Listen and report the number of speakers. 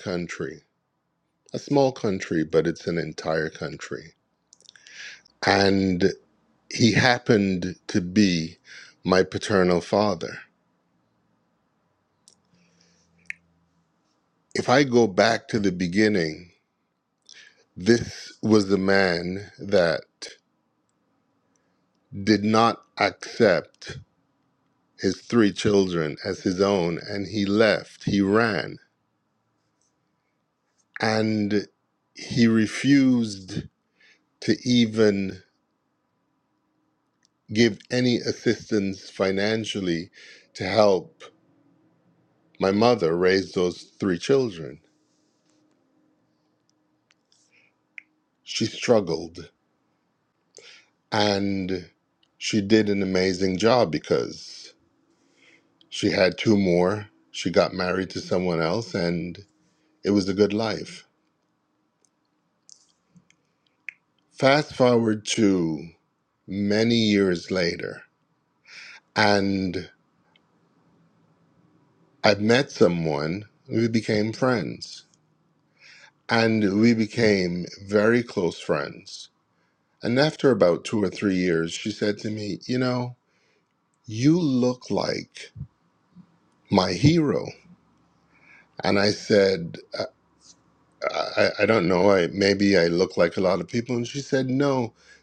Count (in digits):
1